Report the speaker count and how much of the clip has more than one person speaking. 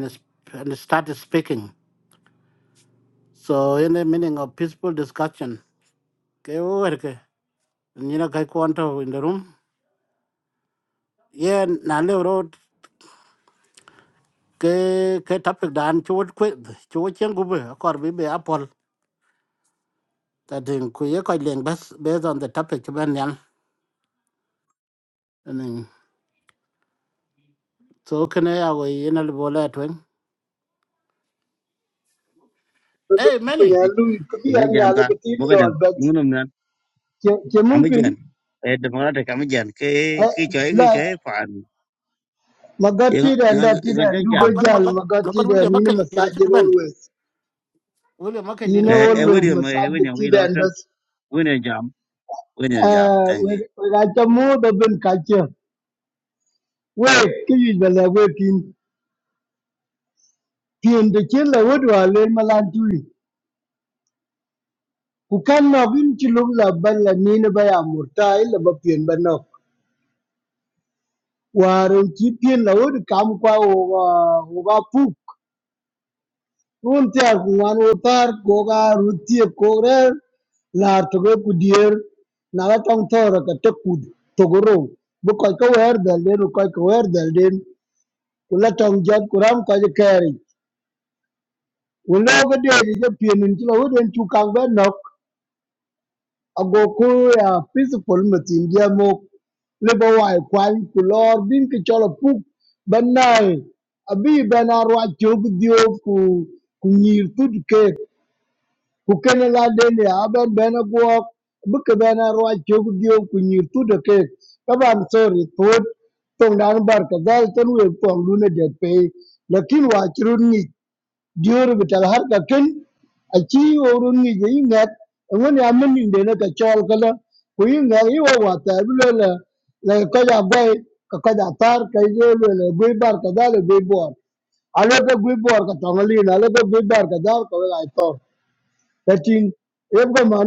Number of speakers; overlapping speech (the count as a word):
three, about 6%